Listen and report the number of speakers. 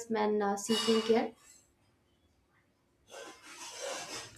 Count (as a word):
one